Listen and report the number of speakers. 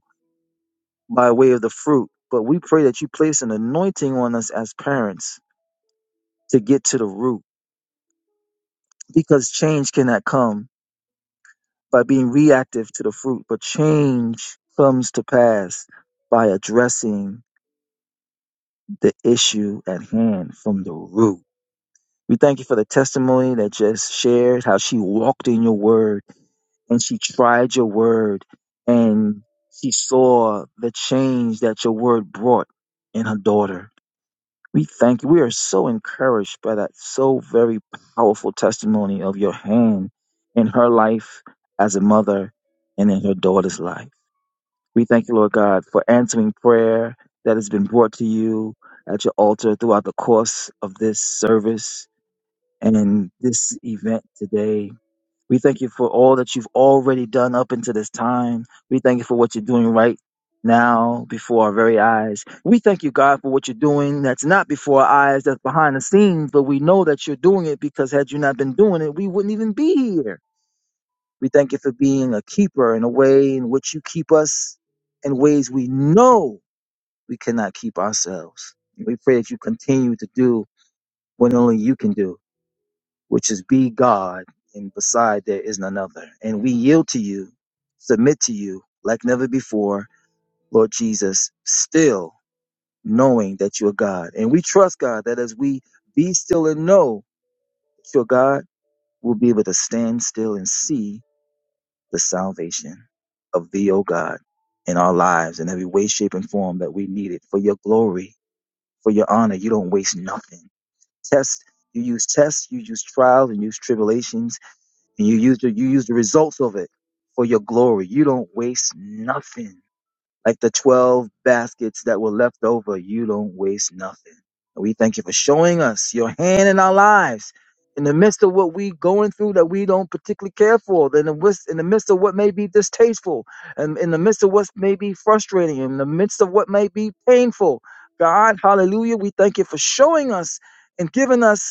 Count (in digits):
1